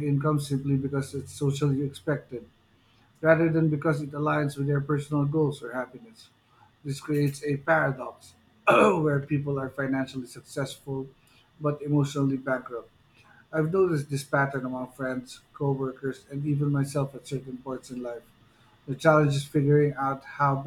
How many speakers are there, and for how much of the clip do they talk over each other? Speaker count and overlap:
1, no overlap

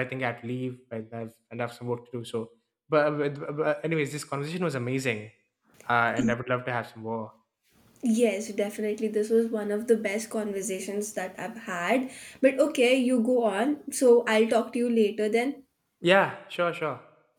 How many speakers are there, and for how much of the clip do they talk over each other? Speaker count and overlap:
2, no overlap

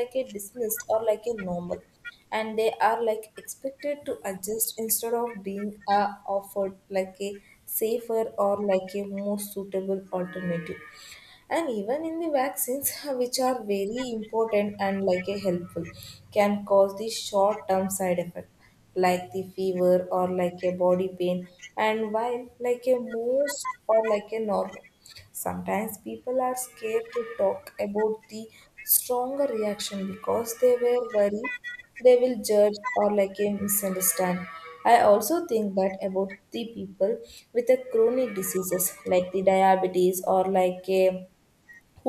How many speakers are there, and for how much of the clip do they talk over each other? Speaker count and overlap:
1, no overlap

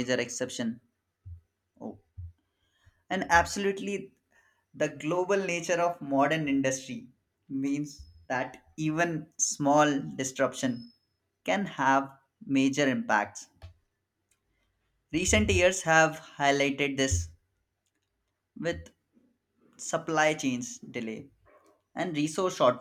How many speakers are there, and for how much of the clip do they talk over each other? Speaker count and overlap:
1, no overlap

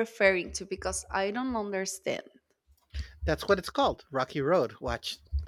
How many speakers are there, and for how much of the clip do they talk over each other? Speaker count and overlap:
2, no overlap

